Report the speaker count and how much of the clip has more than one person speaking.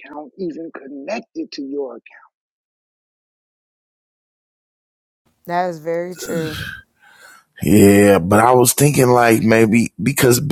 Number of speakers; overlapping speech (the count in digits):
3, no overlap